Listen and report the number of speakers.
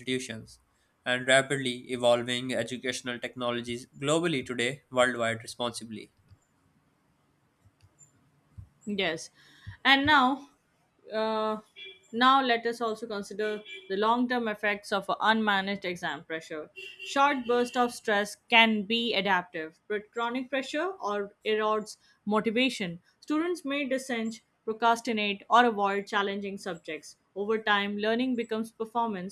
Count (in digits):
2